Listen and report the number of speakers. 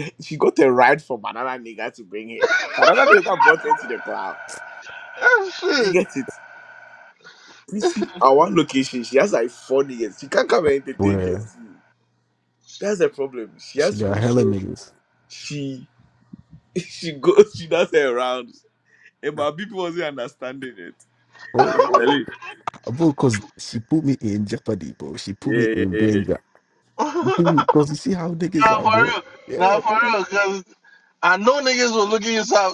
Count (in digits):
3